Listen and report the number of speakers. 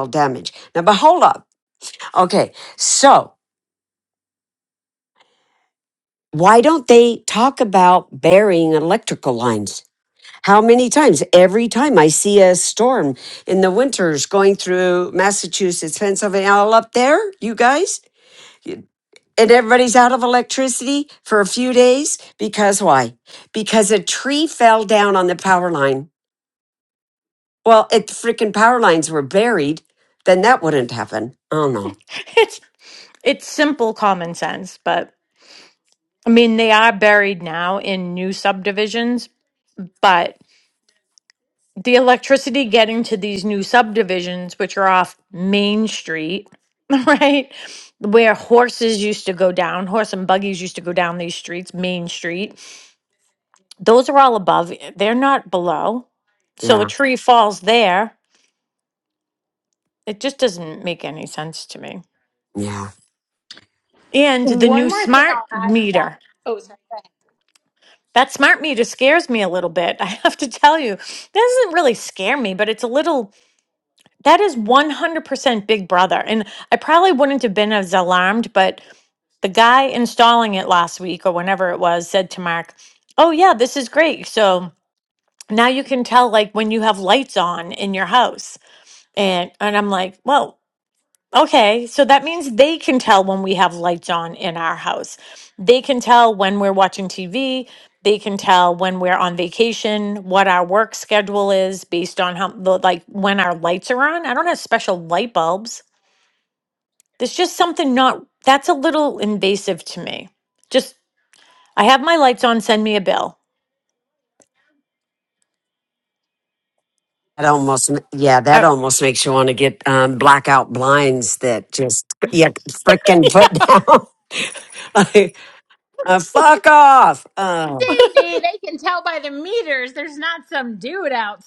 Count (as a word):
three